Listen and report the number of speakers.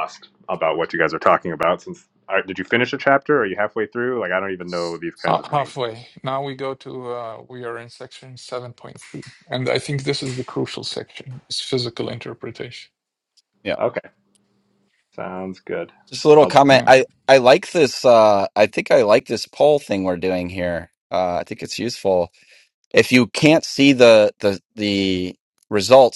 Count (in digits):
3